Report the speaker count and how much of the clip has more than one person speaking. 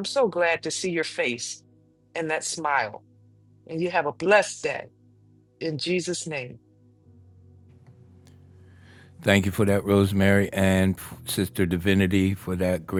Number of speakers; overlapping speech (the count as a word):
two, no overlap